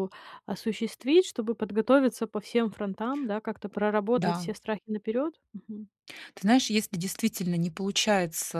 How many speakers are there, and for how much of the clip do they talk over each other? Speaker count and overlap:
2, about 4%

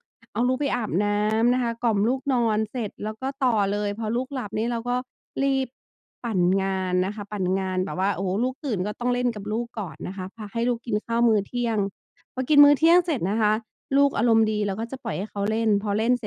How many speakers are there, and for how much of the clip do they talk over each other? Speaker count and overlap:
1, no overlap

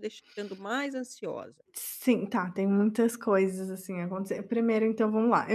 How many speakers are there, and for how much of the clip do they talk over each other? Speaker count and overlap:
2, no overlap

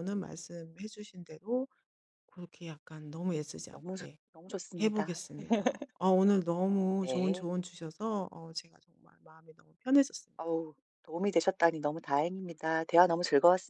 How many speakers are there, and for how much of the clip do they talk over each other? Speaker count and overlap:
2, about 9%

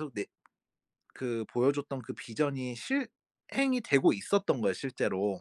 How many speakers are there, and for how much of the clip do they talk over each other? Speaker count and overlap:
1, no overlap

